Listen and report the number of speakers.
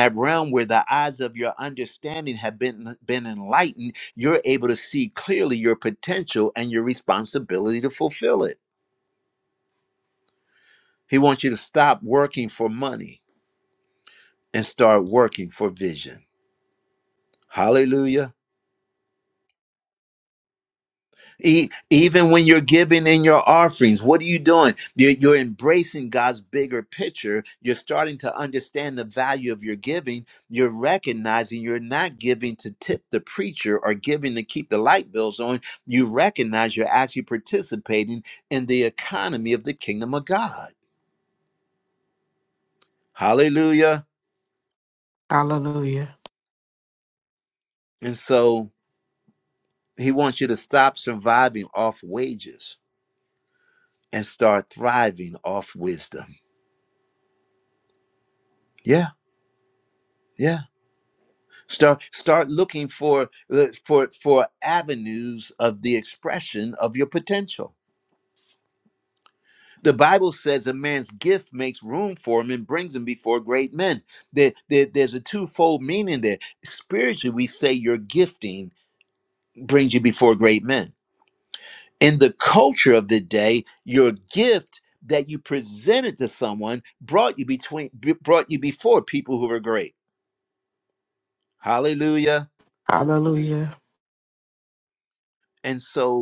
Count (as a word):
two